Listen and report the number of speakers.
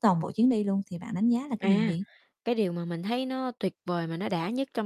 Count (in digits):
2